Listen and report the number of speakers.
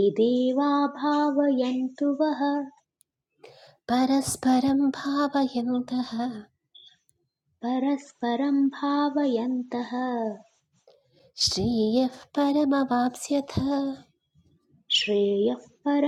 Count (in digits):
2